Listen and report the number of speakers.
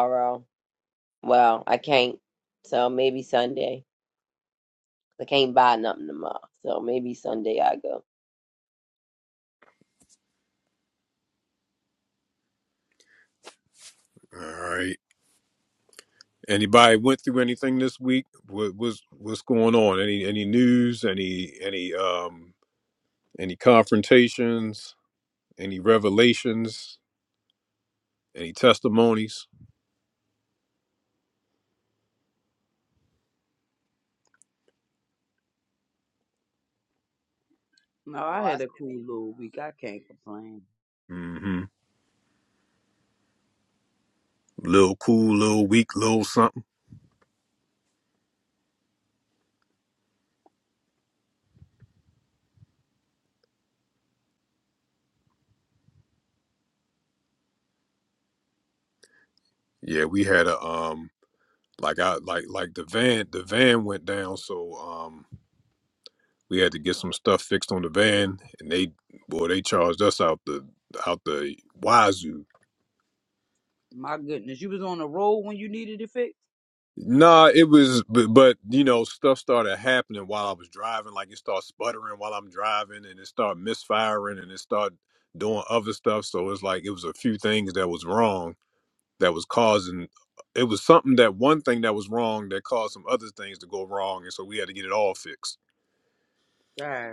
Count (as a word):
three